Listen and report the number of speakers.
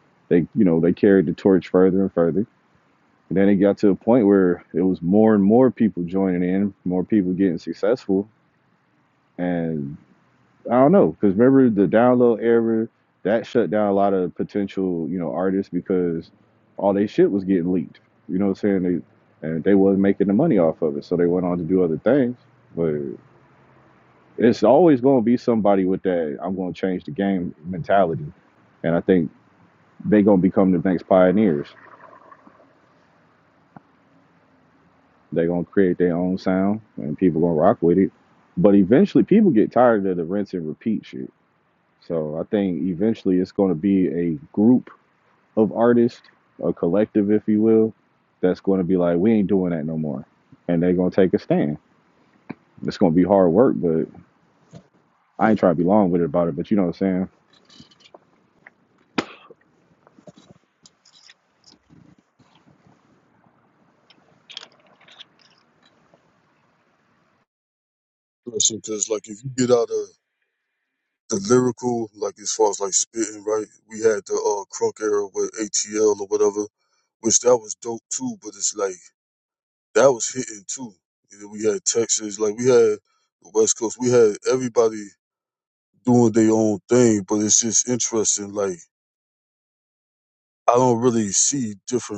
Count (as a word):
two